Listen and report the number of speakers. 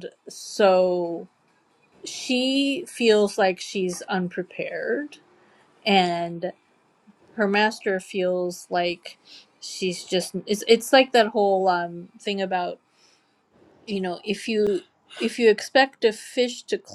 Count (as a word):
one